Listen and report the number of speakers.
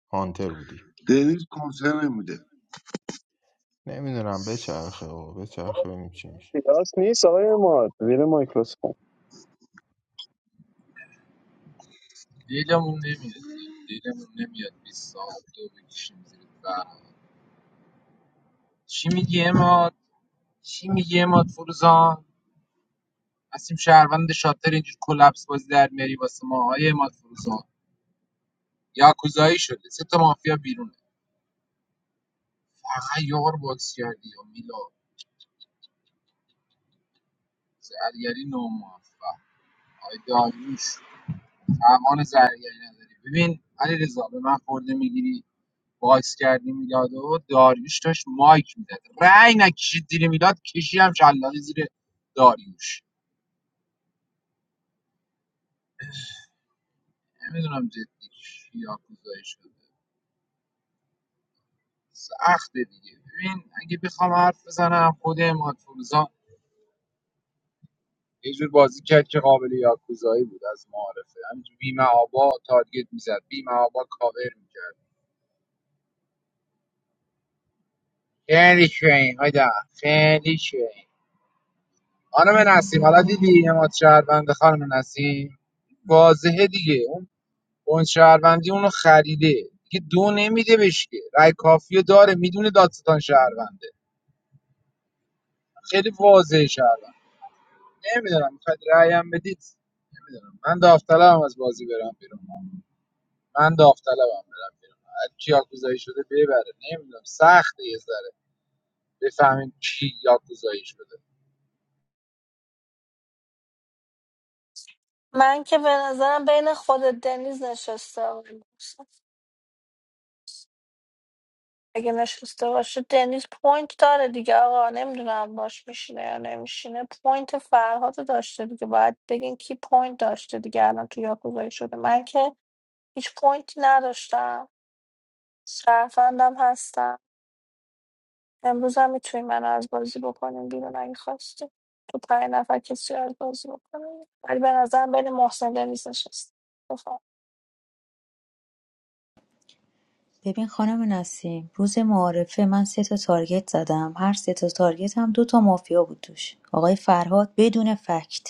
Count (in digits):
6